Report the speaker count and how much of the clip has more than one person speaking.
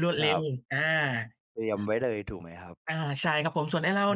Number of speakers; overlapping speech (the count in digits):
2, about 9%